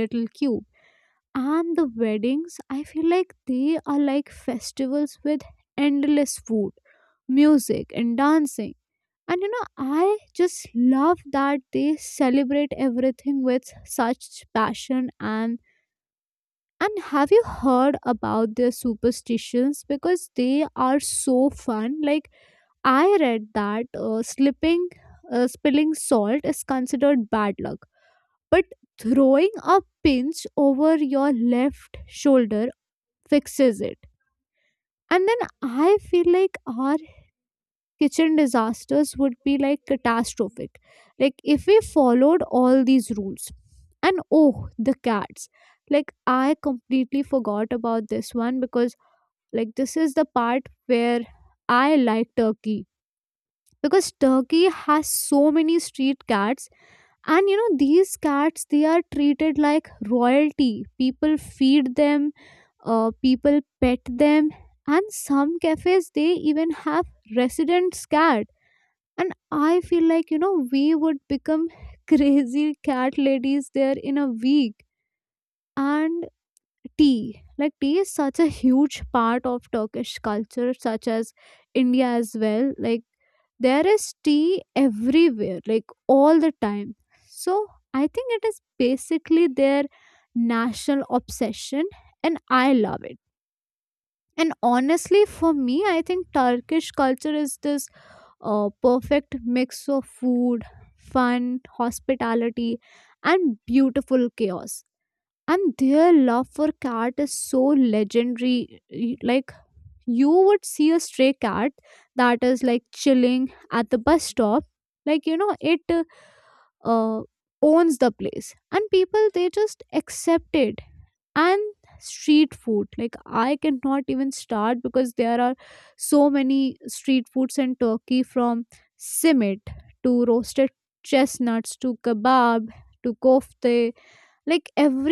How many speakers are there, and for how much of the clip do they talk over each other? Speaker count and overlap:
one, no overlap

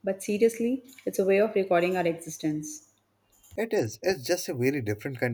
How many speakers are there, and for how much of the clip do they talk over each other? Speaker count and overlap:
two, no overlap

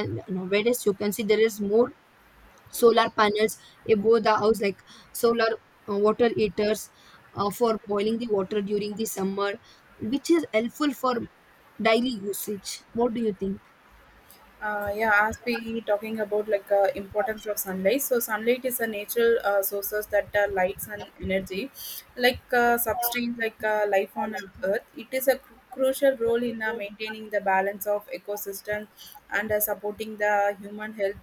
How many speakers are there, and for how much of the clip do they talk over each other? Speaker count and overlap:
two, no overlap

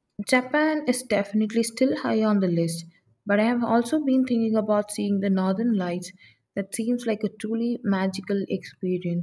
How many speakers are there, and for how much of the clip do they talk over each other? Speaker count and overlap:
one, no overlap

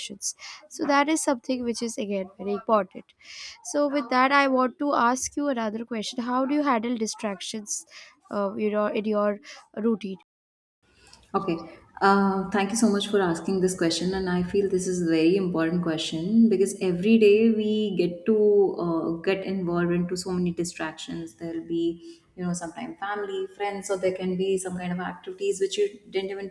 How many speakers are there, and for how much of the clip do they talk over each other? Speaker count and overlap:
two, no overlap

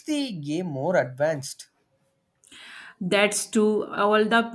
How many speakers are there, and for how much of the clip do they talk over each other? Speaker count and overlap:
two, no overlap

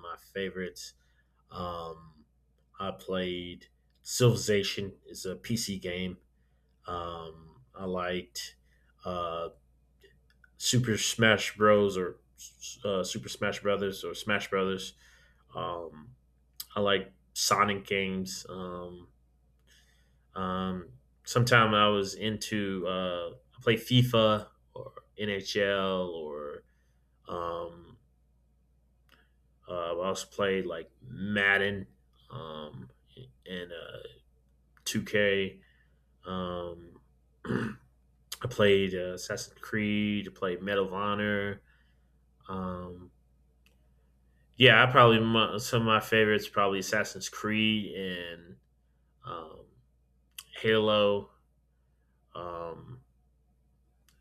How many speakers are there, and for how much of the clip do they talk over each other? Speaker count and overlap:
one, no overlap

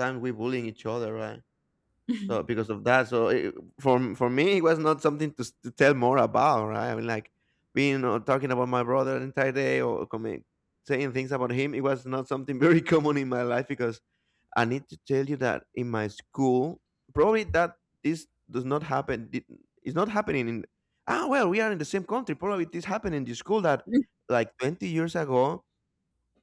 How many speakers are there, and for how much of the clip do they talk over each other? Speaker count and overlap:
one, no overlap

